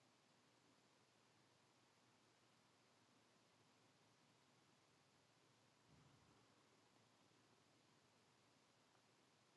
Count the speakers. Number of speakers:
0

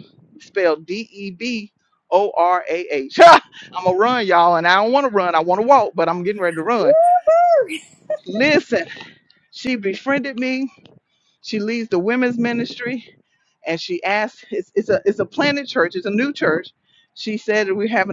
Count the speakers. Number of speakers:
2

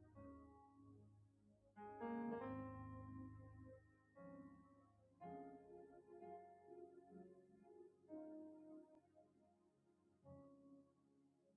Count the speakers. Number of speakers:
0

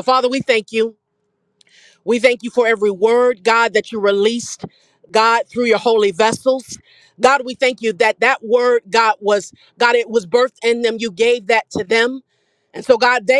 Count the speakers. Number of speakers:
1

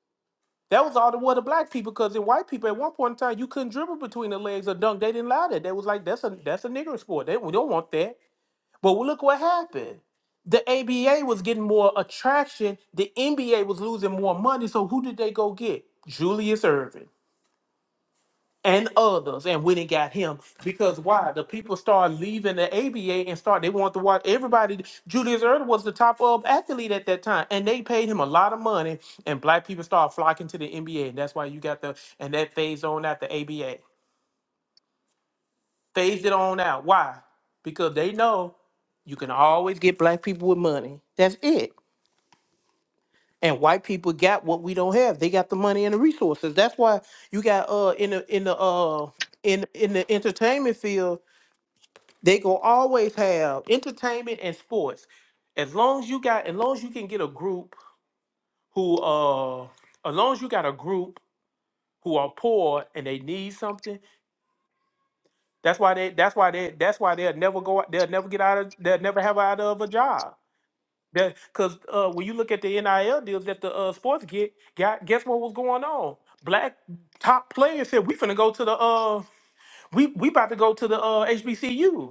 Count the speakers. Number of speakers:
1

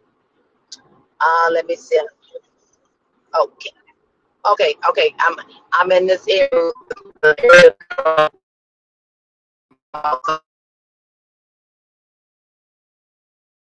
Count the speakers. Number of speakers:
1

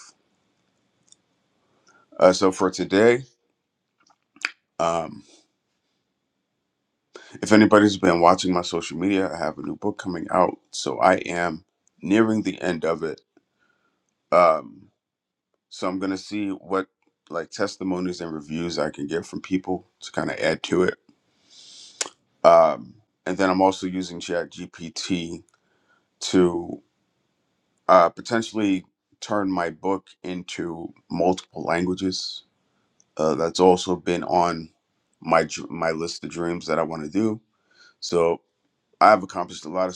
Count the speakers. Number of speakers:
1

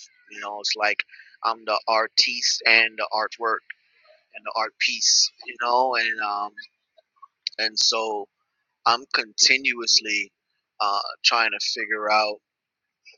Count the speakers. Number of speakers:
1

